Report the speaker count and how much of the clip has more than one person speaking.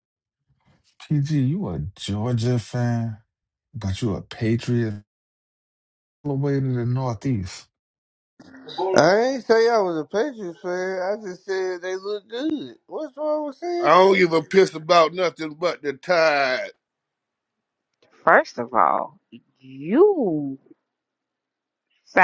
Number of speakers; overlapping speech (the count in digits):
4, about 2%